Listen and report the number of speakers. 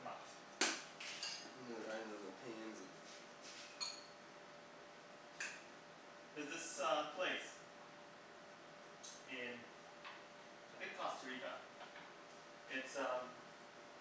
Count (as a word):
two